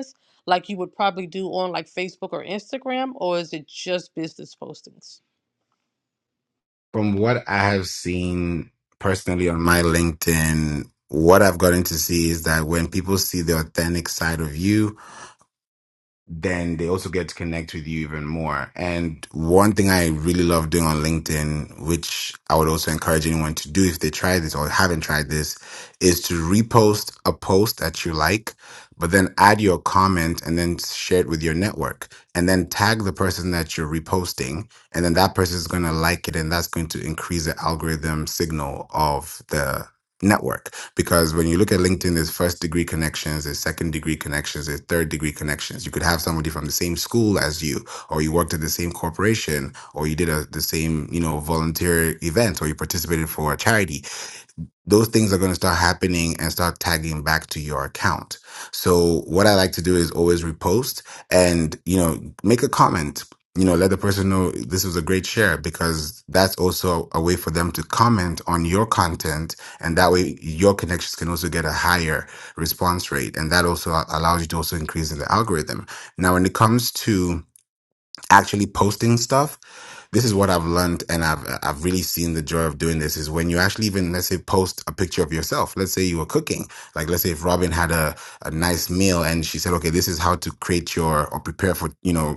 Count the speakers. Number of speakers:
2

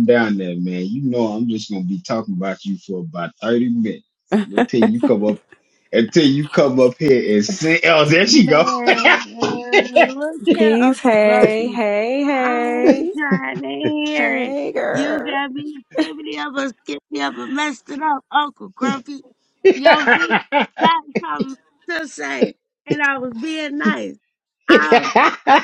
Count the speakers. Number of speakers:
3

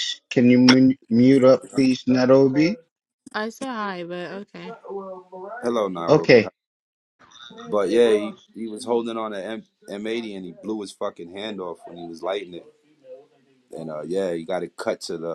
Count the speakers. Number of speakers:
3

